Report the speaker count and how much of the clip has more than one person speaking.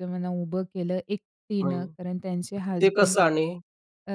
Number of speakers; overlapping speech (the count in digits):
2, about 16%